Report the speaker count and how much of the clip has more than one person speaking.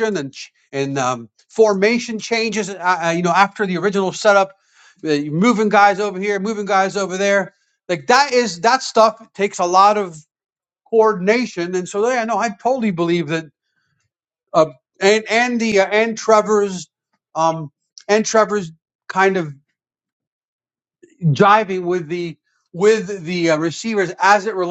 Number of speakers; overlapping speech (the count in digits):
1, no overlap